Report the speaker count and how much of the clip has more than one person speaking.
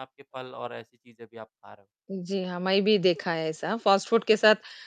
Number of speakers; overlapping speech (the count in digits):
2, no overlap